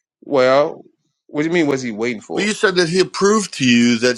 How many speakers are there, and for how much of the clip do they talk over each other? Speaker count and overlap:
2, about 3%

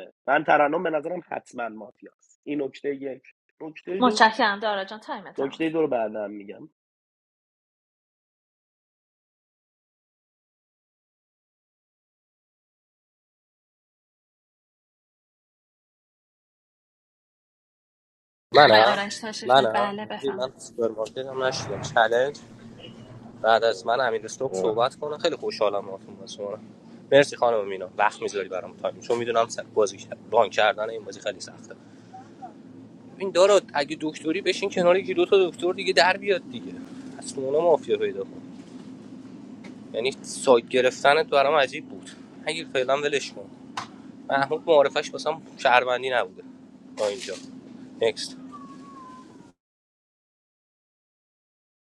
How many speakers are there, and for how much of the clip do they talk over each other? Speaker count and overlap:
3, about 3%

